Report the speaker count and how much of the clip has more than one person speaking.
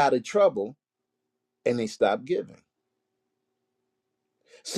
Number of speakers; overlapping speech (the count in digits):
1, no overlap